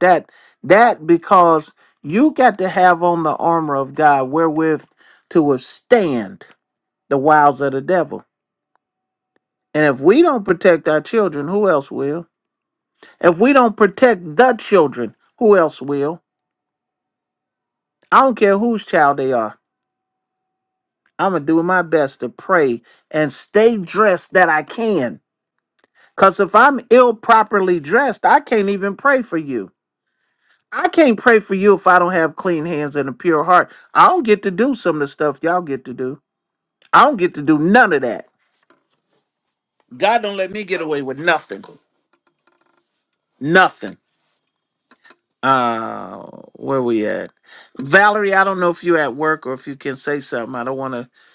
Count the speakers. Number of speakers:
one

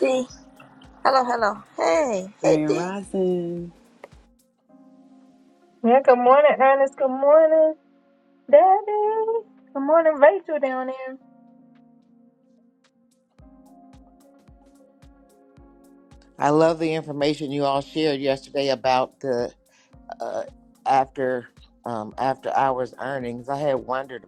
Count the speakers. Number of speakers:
four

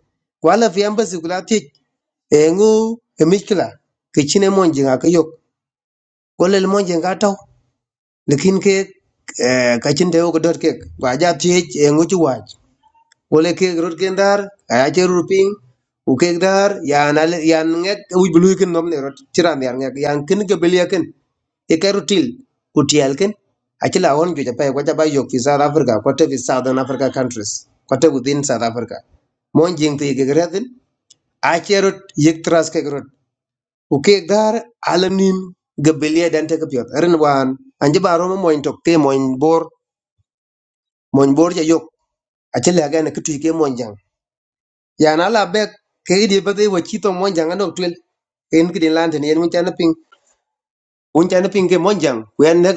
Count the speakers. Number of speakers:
one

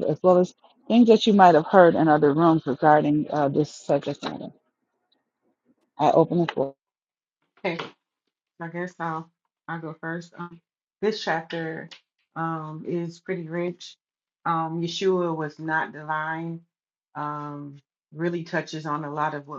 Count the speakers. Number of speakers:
two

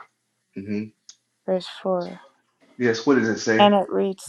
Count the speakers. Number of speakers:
two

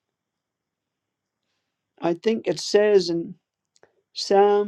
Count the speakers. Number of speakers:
one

